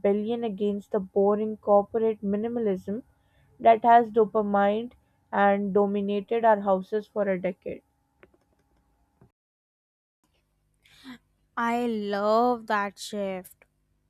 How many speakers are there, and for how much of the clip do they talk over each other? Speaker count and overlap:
2, no overlap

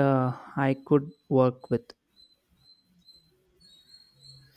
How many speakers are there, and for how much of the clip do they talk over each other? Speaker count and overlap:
1, no overlap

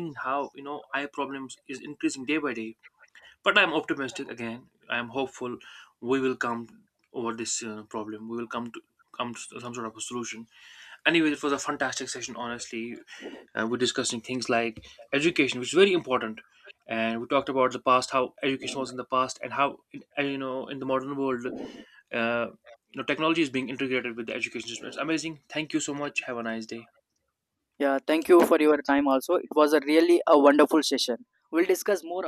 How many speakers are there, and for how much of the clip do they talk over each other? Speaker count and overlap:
2, no overlap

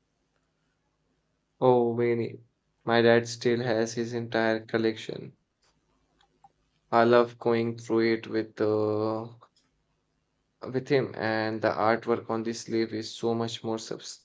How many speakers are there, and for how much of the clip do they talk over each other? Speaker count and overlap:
1, no overlap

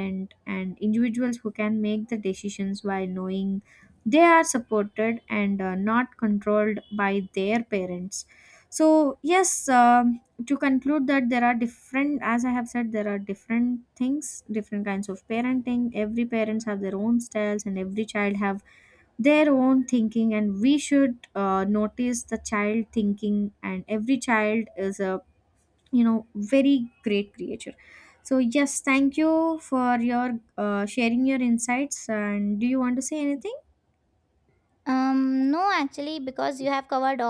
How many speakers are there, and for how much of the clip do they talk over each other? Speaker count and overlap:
2, no overlap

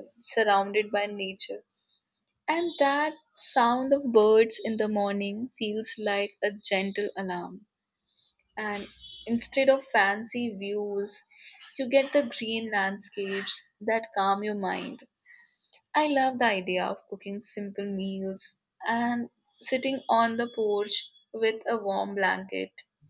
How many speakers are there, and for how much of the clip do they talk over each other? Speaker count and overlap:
1, no overlap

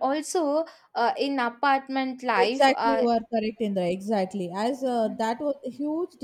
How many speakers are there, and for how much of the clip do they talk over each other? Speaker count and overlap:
2, about 12%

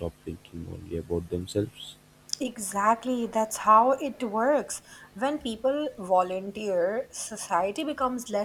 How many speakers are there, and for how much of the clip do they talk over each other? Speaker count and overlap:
2, no overlap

